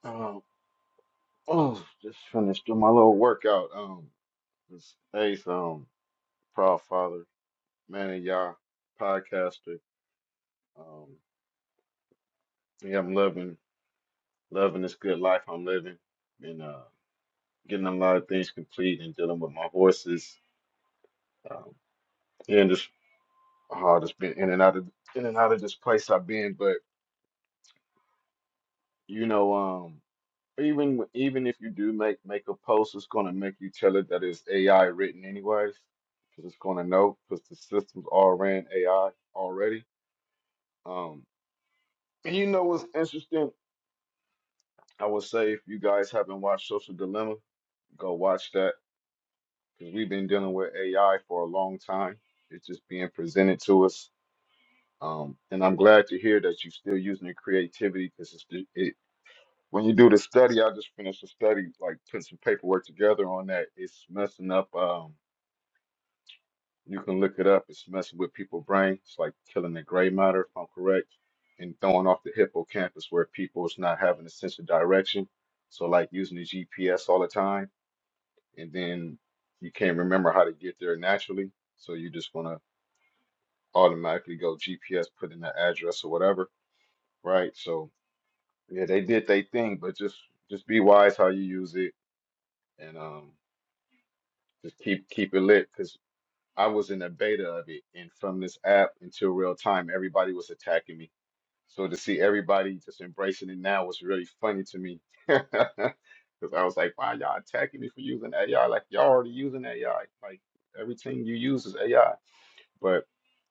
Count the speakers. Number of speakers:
1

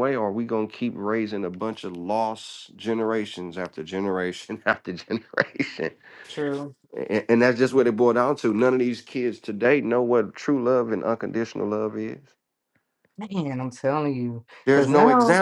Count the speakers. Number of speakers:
2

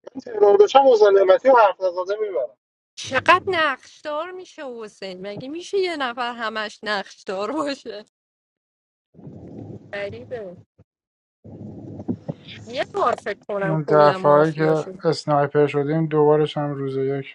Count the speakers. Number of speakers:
3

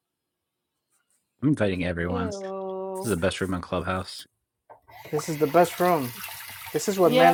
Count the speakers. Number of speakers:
3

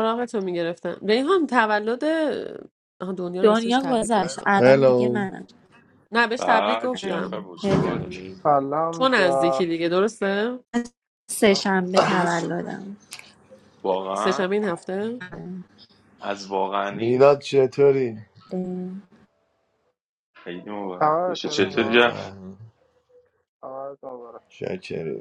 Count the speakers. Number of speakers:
5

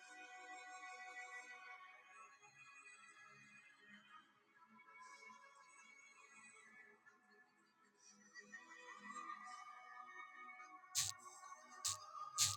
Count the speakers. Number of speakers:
0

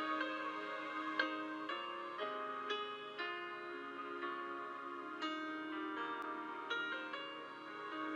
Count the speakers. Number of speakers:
0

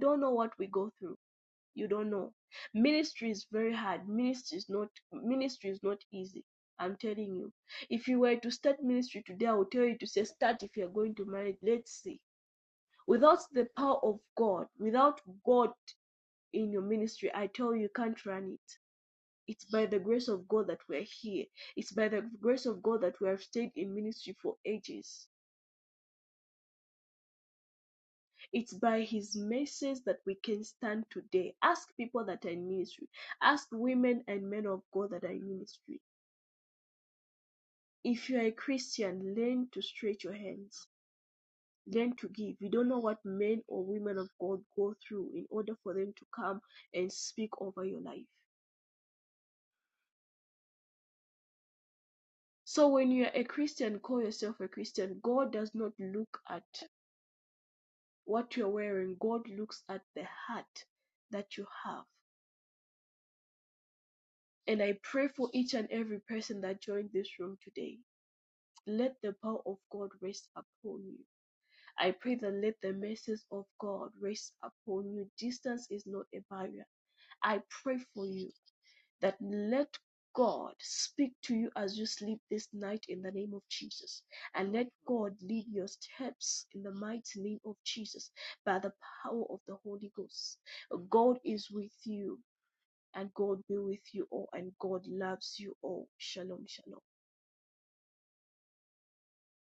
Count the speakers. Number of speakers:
1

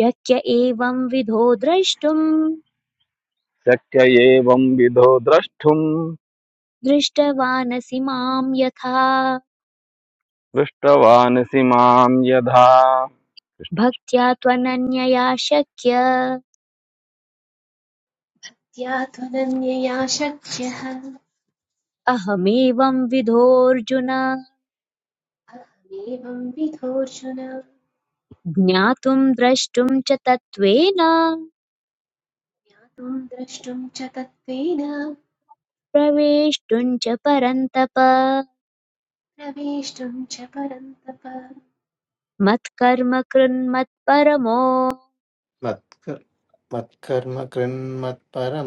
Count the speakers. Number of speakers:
4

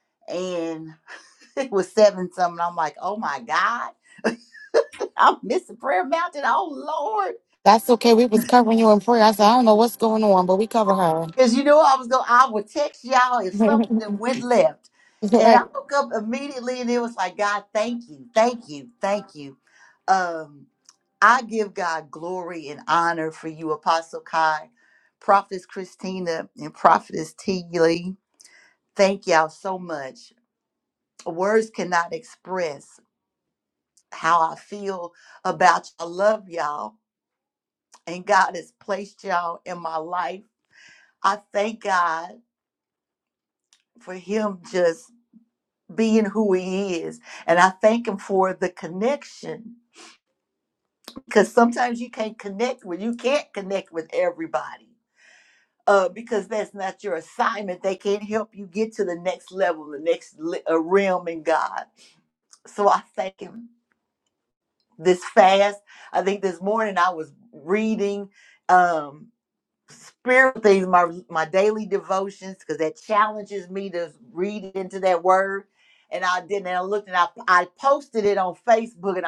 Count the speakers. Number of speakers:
2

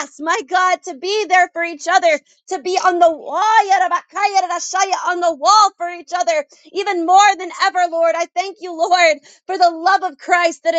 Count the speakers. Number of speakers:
1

